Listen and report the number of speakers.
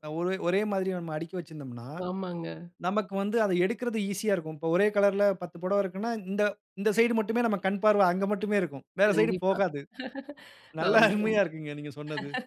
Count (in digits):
2